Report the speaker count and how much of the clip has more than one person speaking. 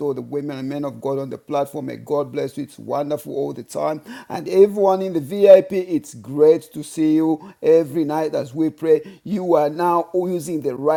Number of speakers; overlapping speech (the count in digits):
1, no overlap